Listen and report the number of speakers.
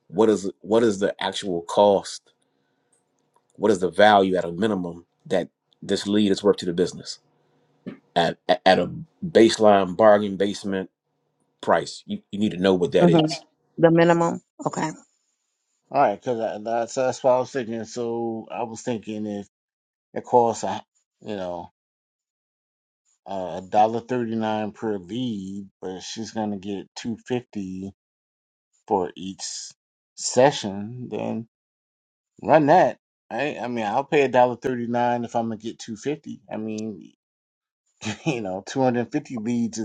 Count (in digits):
3